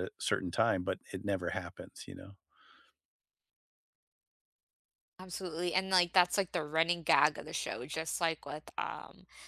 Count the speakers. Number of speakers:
2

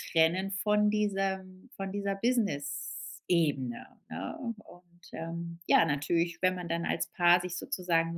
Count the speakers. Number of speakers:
1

